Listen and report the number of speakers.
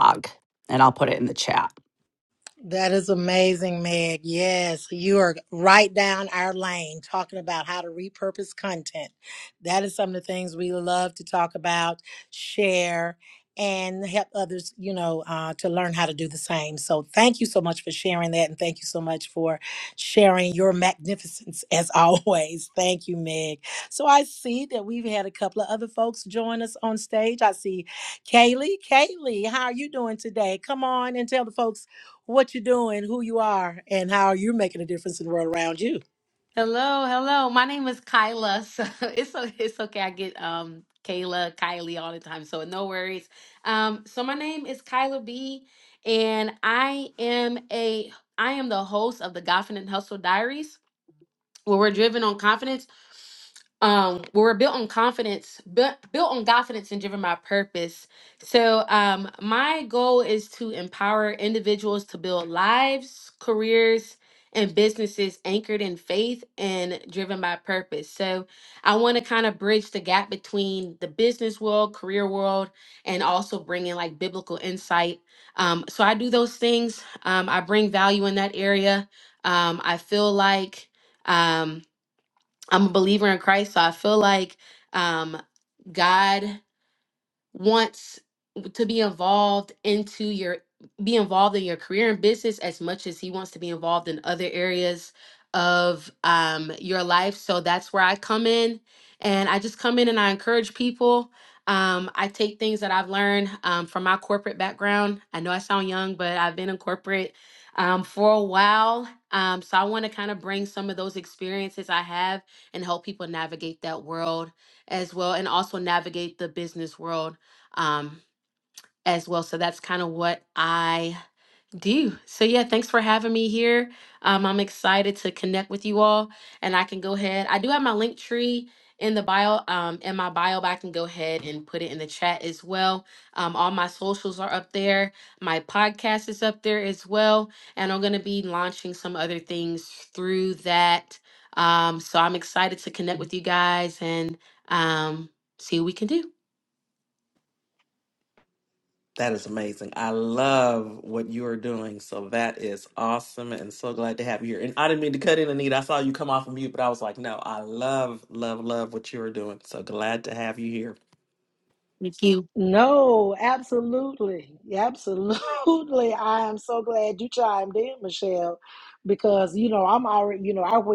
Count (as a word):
four